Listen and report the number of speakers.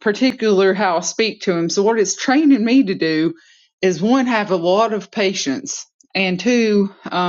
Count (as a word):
one